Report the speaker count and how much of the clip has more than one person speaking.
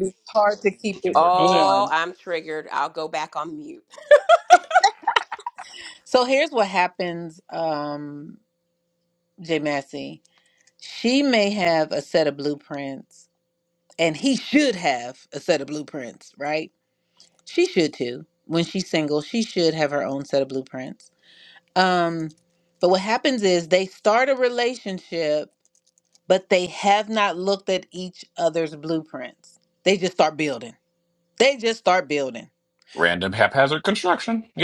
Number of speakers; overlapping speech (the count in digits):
3, about 2%